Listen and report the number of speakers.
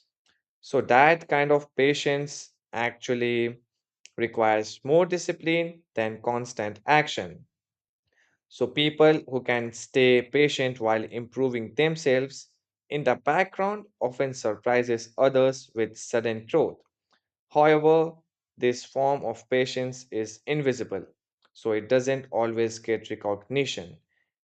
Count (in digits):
1